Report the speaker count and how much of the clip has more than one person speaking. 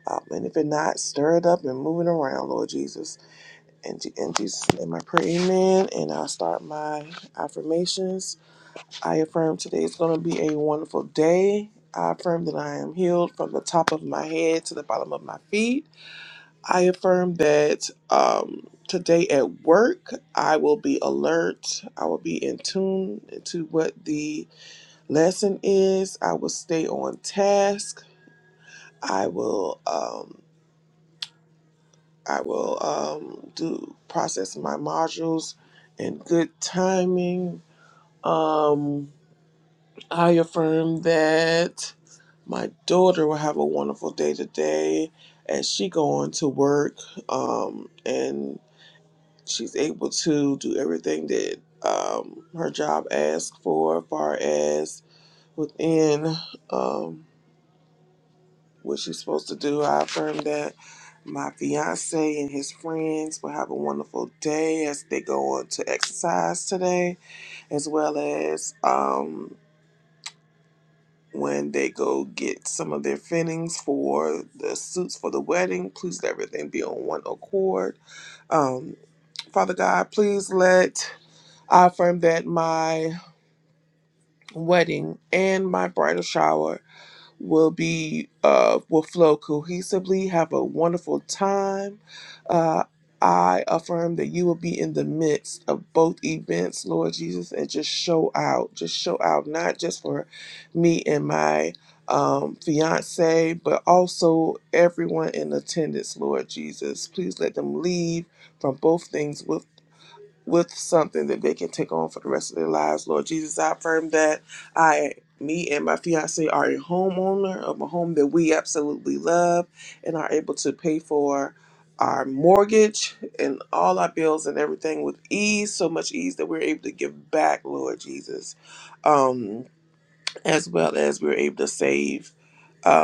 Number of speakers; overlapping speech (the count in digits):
1, no overlap